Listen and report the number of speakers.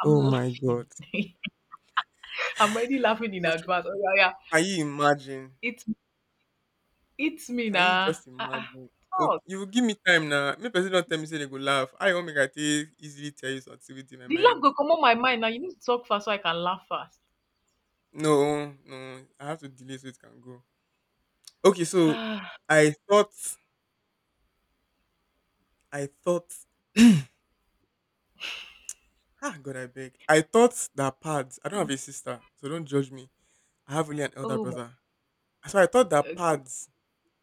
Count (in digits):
2